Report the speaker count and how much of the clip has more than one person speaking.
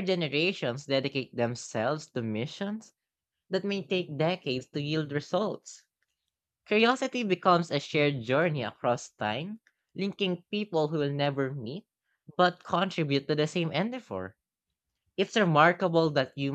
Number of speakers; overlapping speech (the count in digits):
1, no overlap